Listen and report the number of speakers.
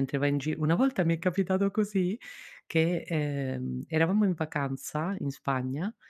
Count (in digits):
1